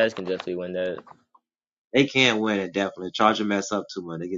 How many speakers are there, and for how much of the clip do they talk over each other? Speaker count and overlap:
2, no overlap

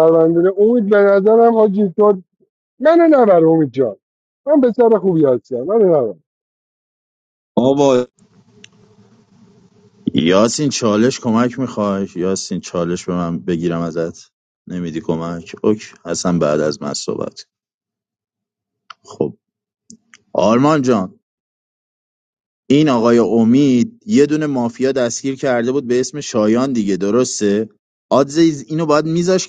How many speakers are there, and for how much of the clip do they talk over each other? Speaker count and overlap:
2, no overlap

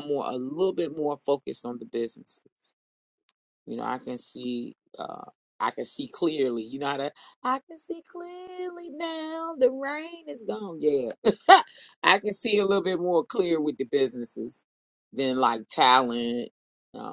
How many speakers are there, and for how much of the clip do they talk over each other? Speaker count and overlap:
1, no overlap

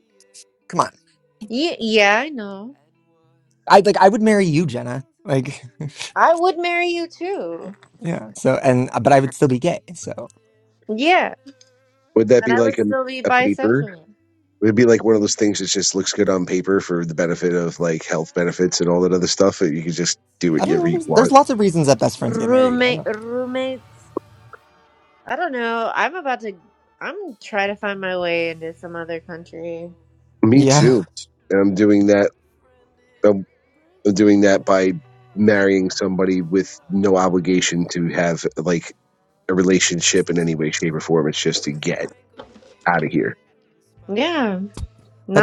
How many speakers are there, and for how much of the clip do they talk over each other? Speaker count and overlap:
3, about 8%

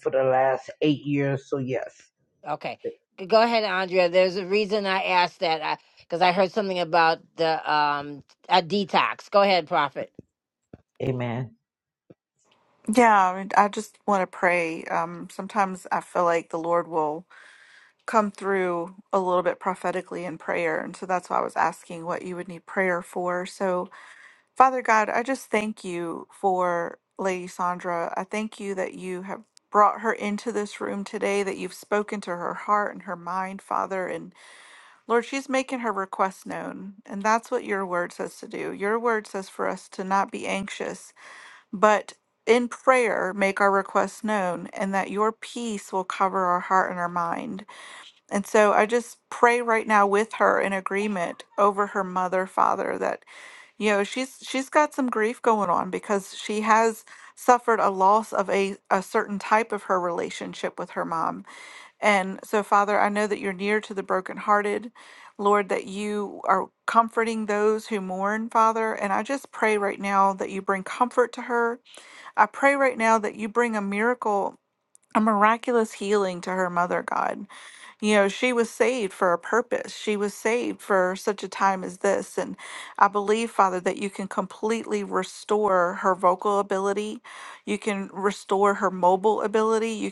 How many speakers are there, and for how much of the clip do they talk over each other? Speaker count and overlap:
3, no overlap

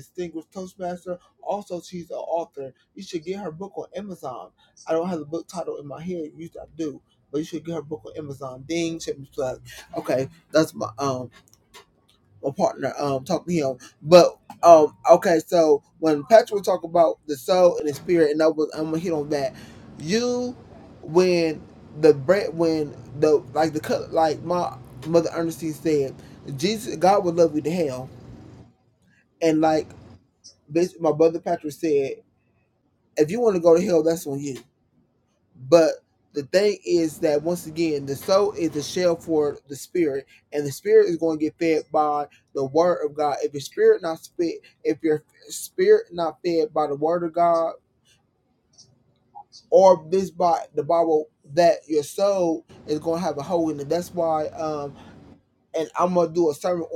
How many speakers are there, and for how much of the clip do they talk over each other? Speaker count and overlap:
1, no overlap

